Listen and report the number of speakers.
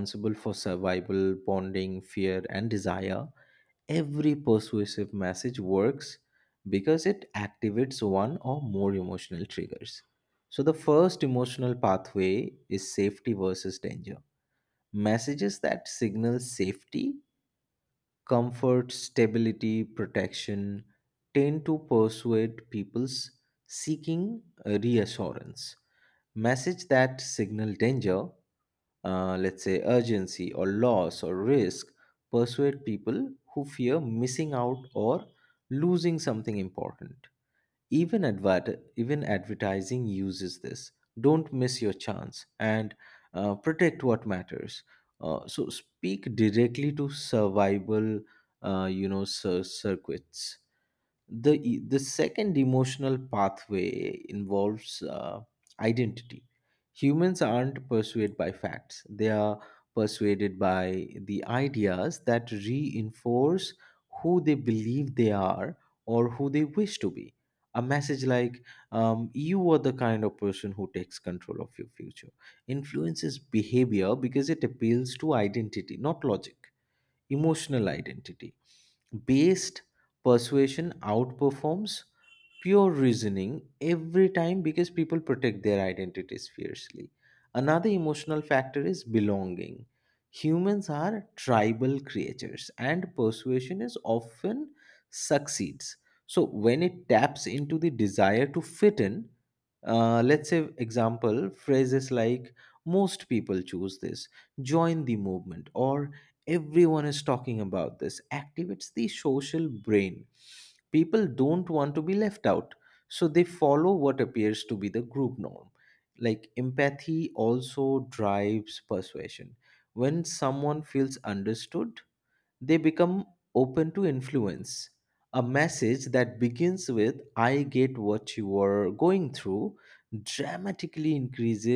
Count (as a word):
one